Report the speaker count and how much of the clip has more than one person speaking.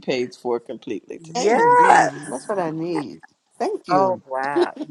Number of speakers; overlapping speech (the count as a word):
three, about 23%